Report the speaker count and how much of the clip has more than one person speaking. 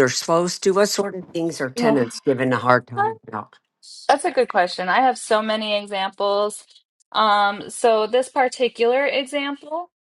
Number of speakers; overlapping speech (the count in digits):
2, about 3%